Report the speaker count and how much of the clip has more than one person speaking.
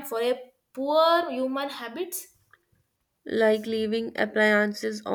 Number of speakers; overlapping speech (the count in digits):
2, no overlap